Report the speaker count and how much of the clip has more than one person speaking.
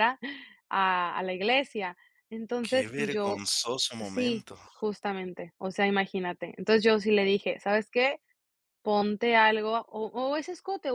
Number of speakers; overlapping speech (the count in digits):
2, about 11%